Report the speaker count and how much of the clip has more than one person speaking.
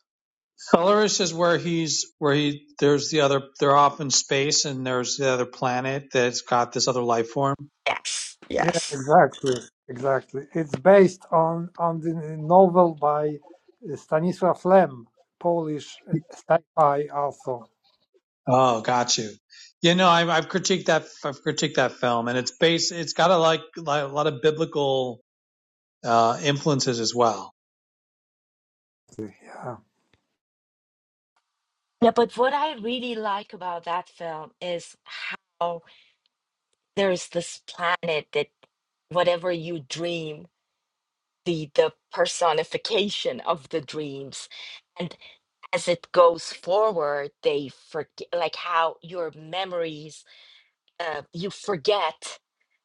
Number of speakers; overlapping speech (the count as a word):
three, about 1%